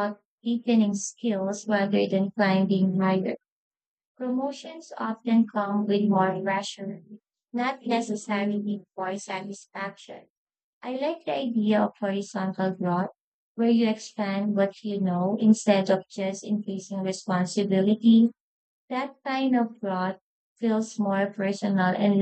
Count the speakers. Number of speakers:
one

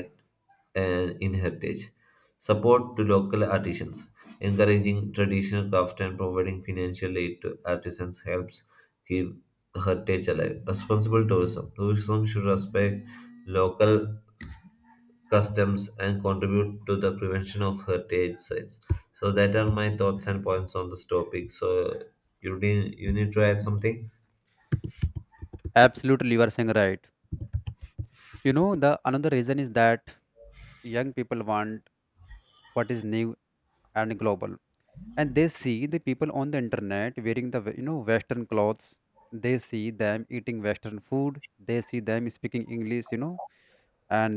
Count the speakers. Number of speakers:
two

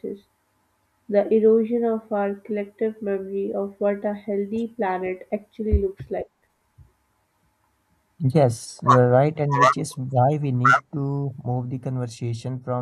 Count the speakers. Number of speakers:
two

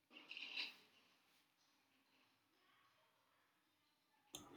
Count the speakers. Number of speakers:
zero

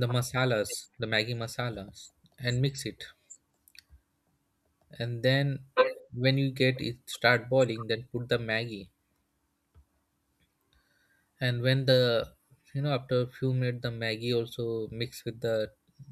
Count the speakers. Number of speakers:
one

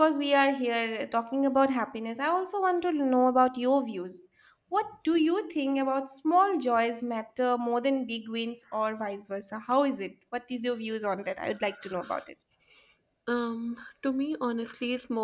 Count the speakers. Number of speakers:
two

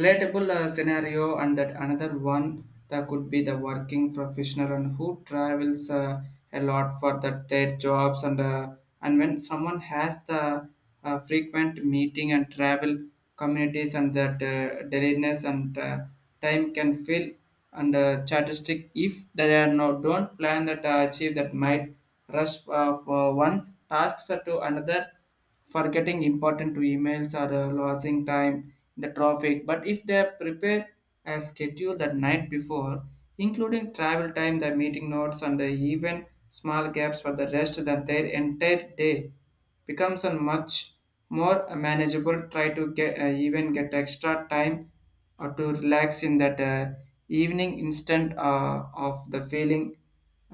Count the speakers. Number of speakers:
one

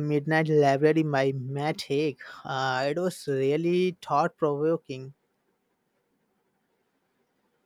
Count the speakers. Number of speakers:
one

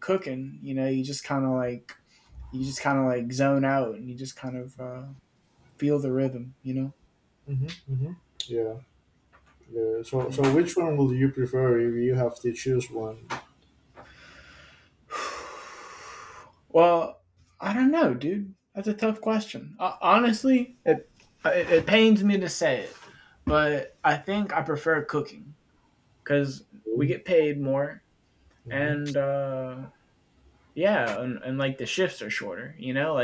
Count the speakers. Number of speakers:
two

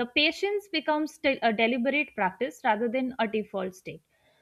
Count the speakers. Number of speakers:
one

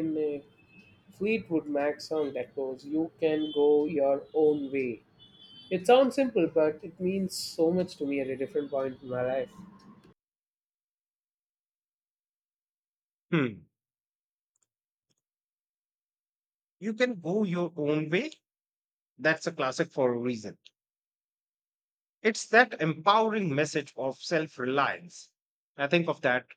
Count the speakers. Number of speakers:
two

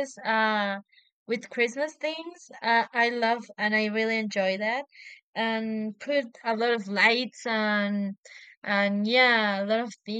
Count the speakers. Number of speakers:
one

